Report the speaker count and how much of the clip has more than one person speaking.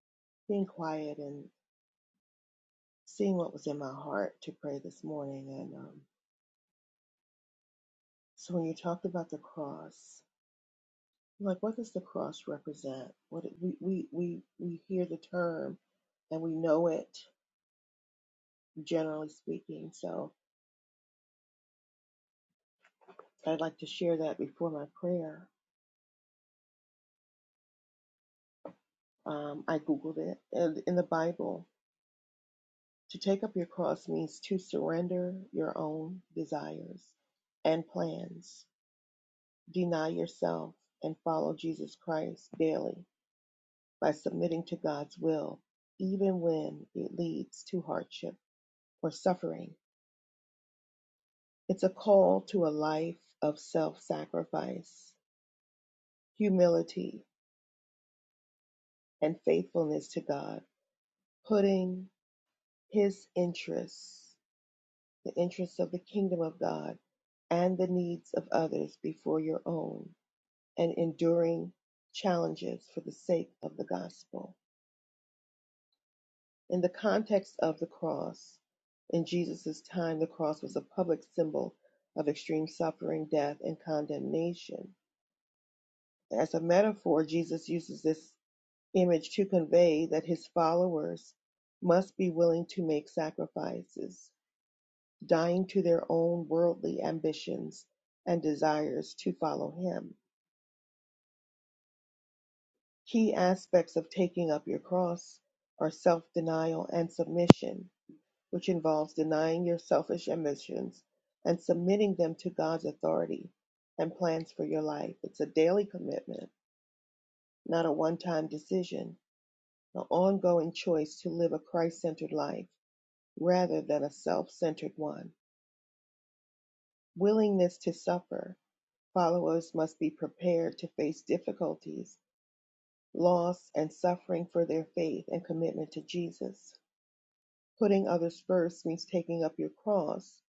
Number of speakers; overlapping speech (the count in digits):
1, no overlap